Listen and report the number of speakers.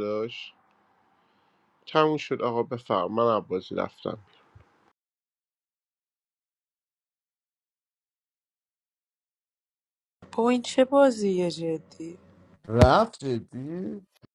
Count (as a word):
three